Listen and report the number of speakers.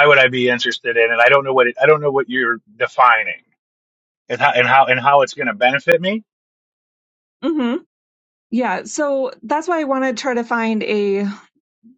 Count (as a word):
two